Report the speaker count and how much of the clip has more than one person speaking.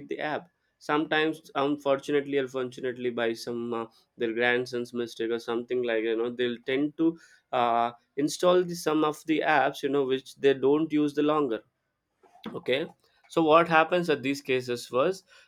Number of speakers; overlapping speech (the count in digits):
1, no overlap